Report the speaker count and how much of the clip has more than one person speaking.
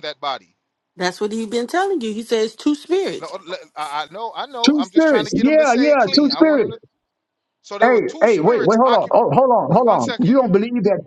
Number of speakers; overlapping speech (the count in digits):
3, about 39%